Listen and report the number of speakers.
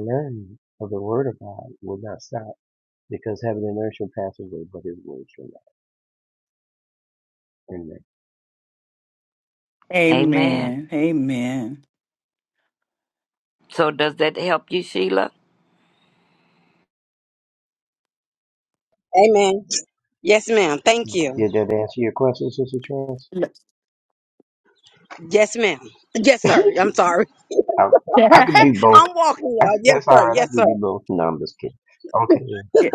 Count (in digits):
4